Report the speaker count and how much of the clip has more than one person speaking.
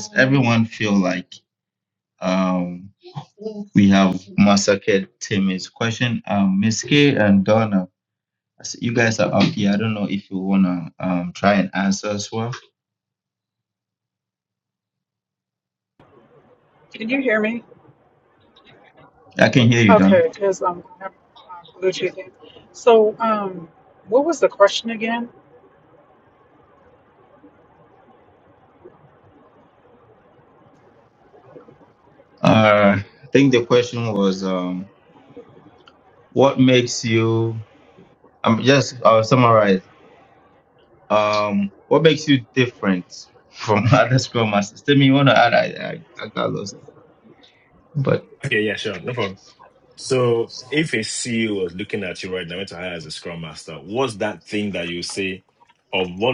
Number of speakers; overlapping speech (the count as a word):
three, about 1%